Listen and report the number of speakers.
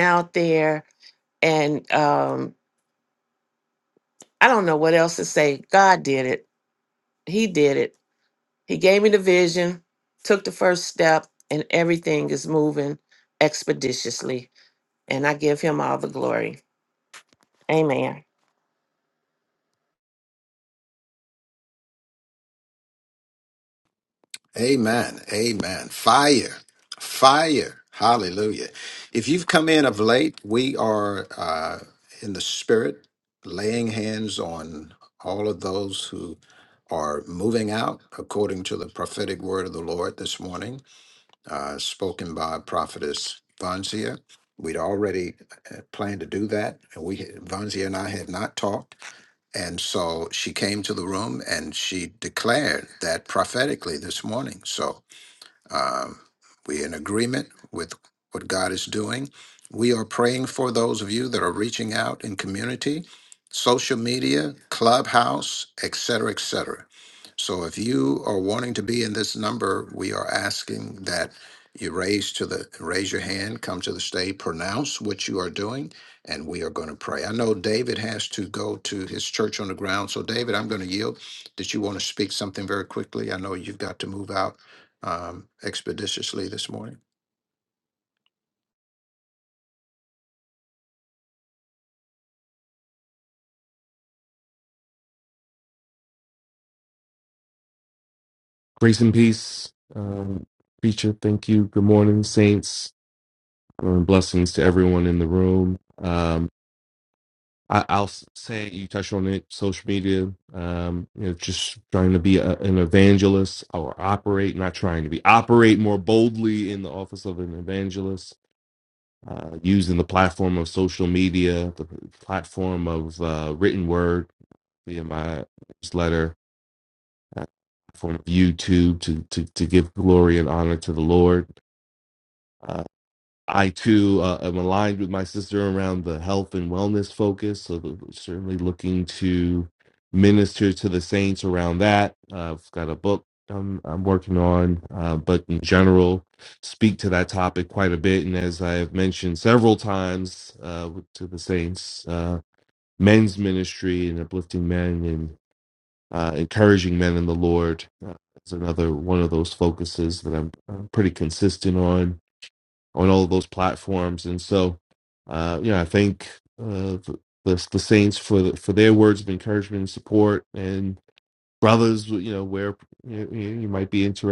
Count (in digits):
3